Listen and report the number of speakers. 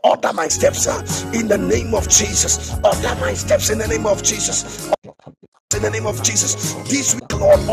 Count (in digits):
2